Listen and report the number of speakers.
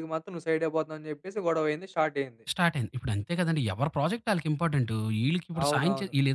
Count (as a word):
two